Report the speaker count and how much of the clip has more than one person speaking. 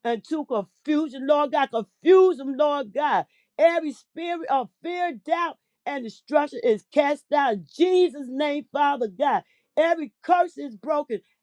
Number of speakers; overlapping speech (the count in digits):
1, no overlap